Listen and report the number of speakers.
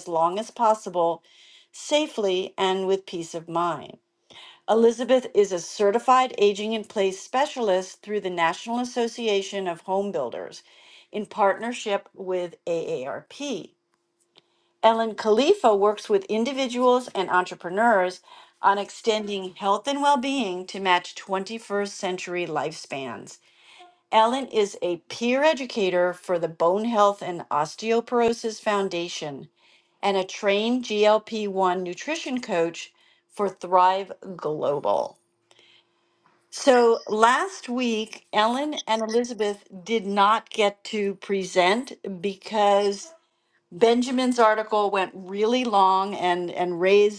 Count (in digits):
1